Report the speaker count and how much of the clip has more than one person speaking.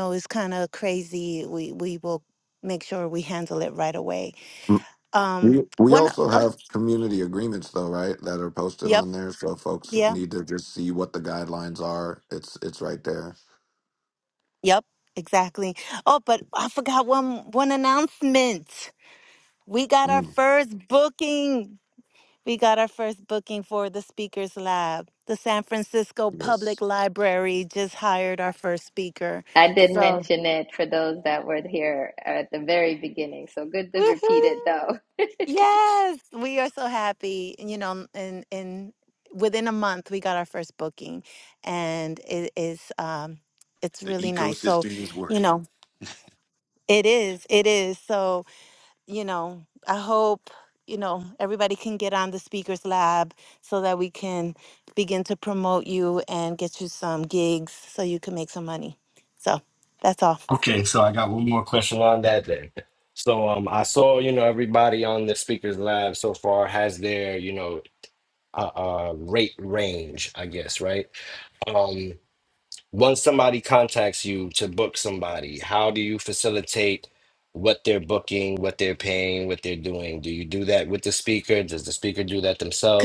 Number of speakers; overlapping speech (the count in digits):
4, about 4%